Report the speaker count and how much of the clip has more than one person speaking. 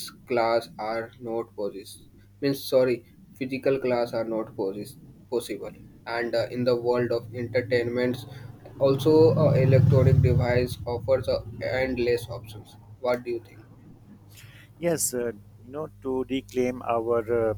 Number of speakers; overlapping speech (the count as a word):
two, no overlap